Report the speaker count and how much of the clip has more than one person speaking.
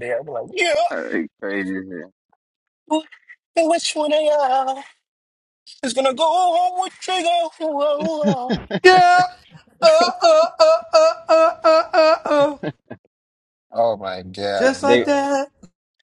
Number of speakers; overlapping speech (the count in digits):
3, about 4%